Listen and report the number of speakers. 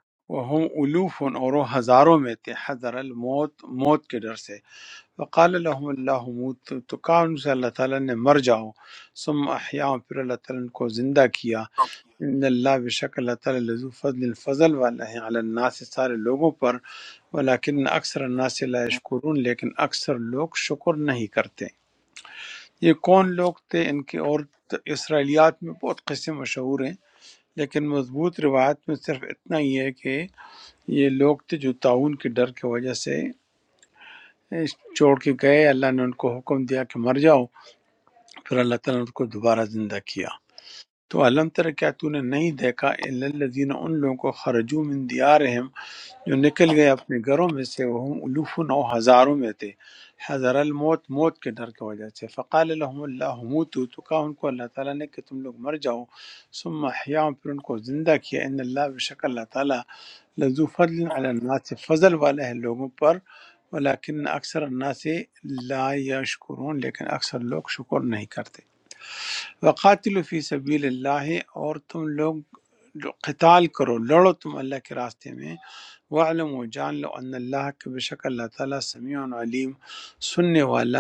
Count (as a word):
one